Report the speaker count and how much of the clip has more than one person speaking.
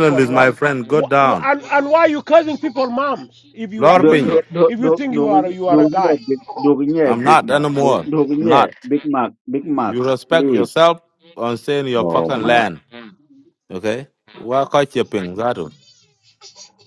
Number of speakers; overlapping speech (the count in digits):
3, about 30%